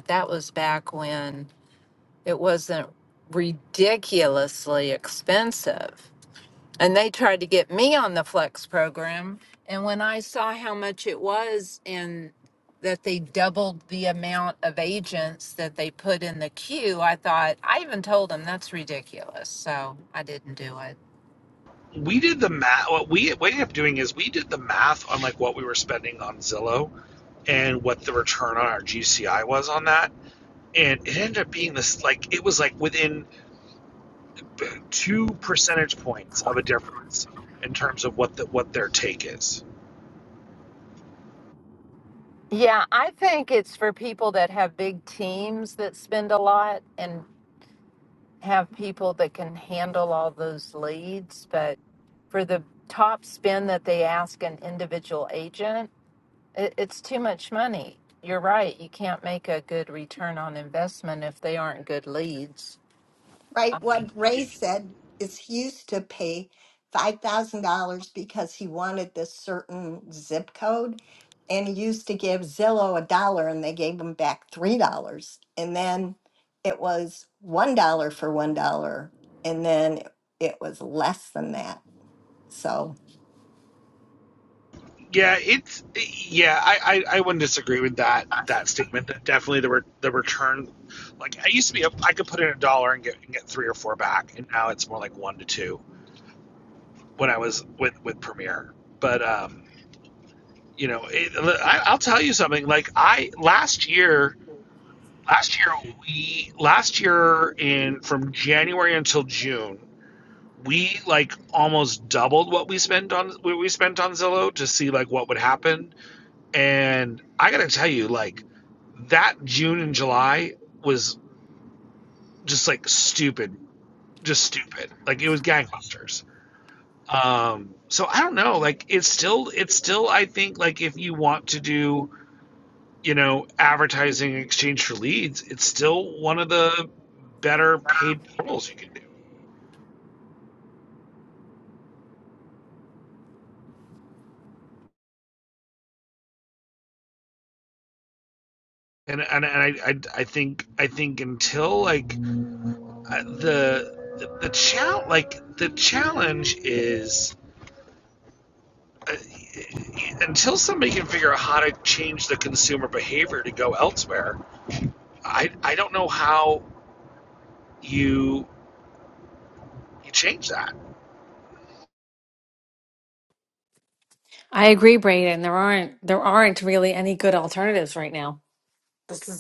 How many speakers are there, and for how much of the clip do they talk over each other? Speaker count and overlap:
four, no overlap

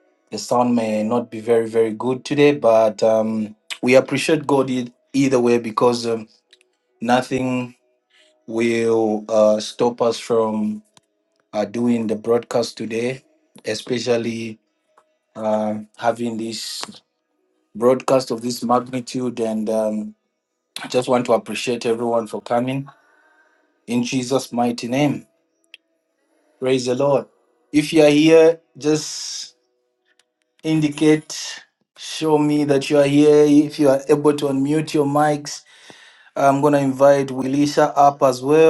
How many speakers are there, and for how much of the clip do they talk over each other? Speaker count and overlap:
one, no overlap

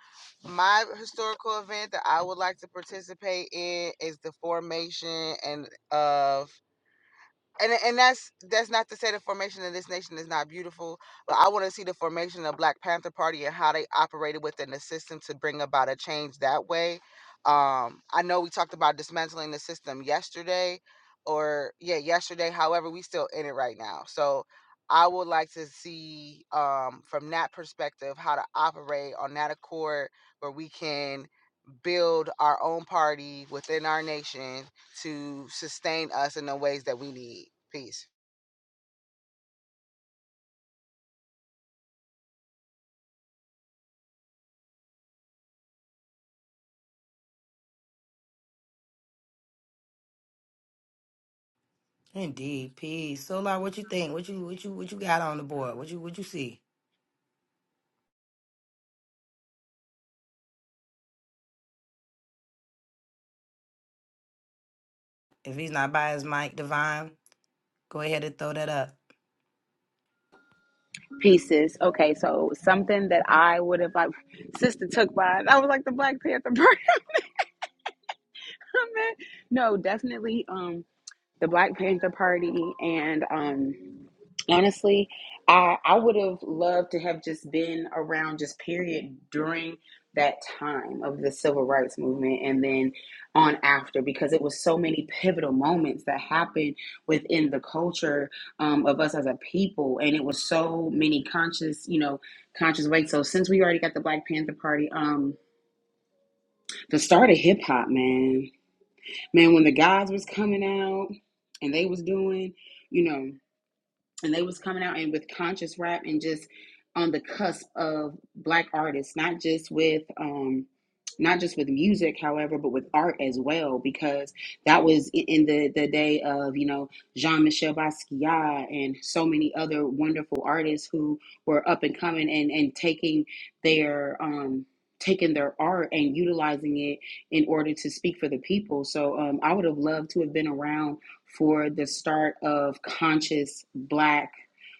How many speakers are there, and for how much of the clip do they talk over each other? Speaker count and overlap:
three, no overlap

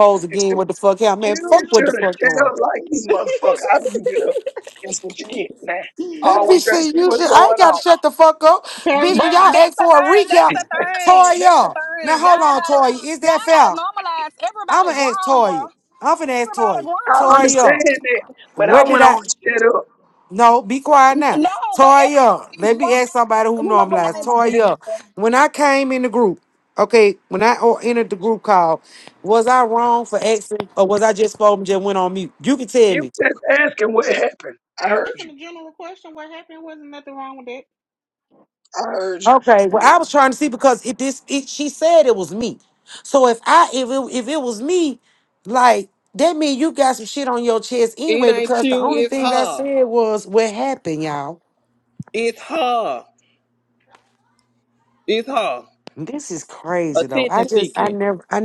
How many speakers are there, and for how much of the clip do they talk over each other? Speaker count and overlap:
five, about 25%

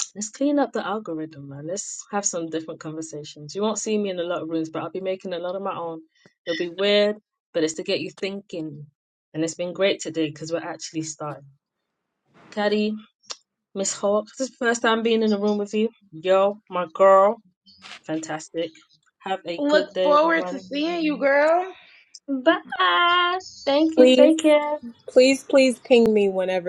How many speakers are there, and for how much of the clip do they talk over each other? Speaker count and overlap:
three, about 5%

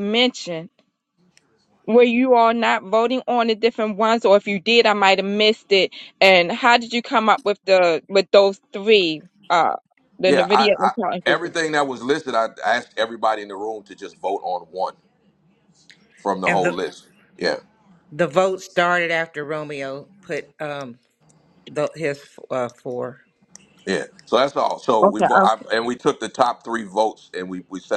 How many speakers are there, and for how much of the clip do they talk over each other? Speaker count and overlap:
three, about 8%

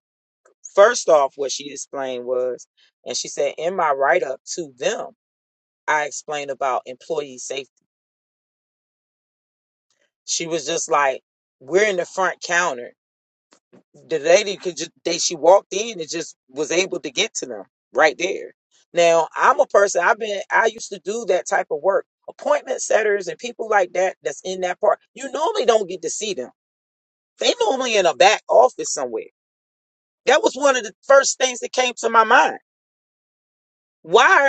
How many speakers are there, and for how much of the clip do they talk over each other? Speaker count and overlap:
one, no overlap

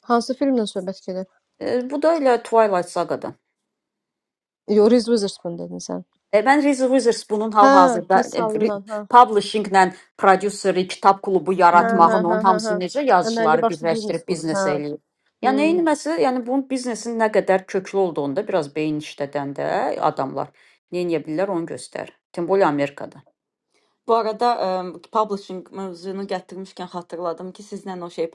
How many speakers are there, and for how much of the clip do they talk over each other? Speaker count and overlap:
three, about 13%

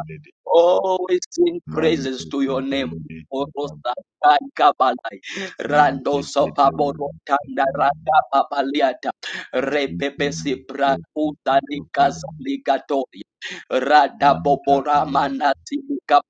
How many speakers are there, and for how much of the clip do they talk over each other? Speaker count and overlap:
two, about 36%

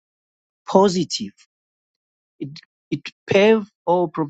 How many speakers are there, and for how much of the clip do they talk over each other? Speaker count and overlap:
one, no overlap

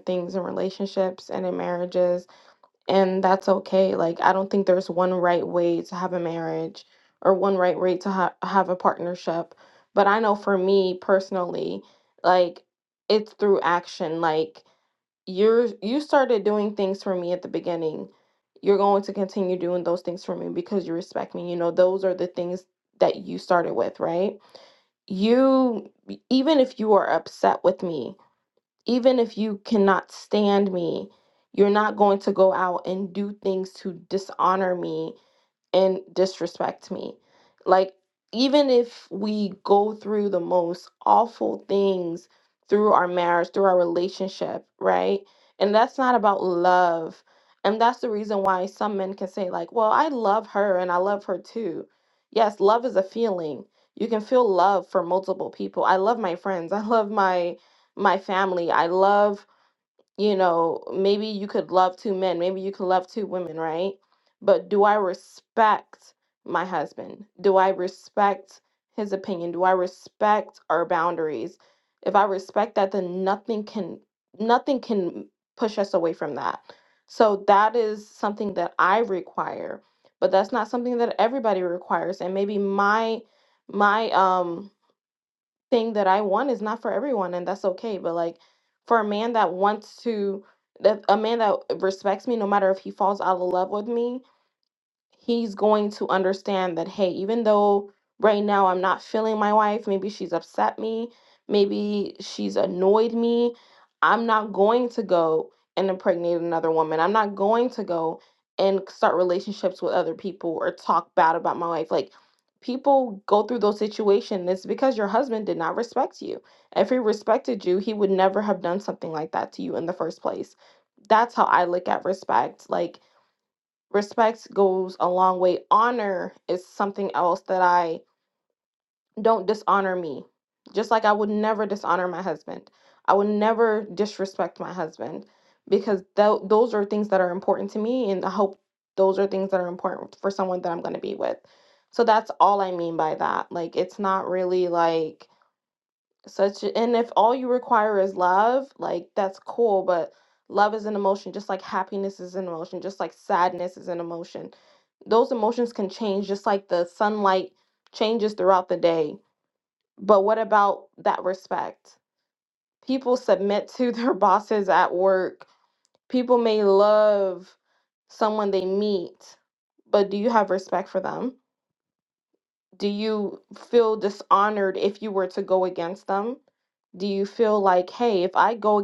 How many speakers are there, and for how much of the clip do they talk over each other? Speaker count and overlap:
one, no overlap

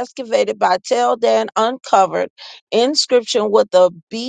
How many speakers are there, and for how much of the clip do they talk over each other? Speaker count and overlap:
one, no overlap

